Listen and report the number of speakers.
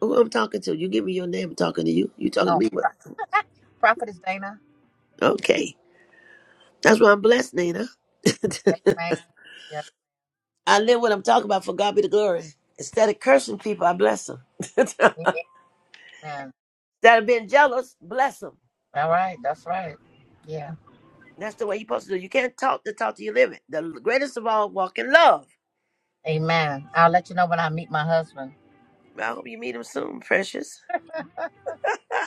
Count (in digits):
2